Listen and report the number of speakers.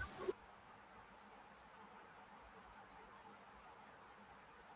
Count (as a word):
zero